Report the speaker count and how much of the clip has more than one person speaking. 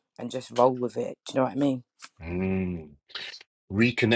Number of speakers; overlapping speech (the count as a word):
two, no overlap